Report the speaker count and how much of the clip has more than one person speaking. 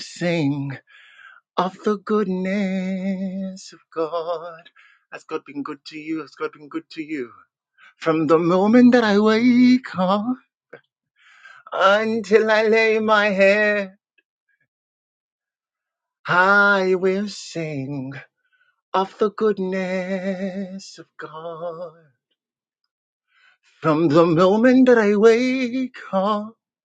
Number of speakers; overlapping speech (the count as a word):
one, no overlap